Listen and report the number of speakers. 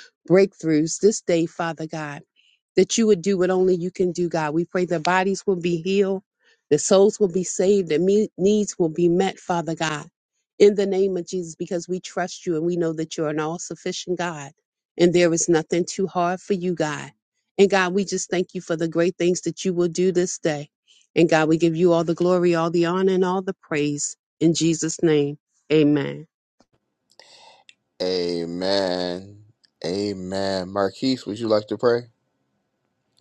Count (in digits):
2